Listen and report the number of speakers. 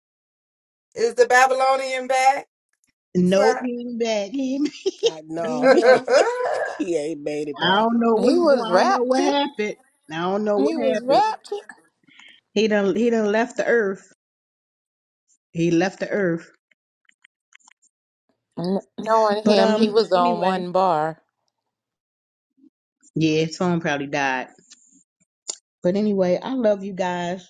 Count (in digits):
4